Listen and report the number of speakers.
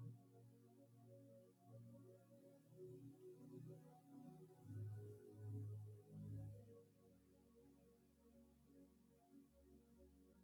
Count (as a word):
zero